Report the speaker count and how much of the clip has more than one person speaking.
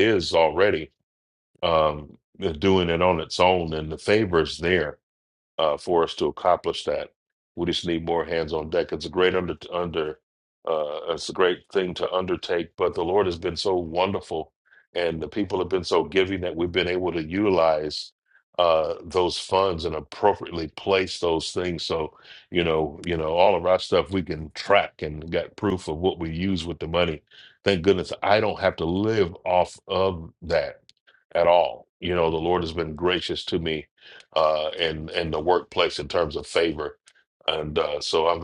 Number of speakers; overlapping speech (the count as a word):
one, no overlap